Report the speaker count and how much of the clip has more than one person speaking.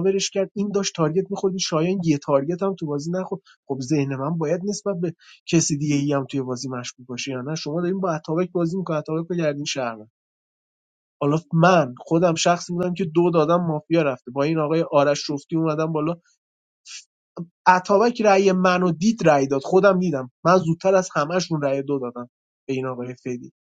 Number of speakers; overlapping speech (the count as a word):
one, no overlap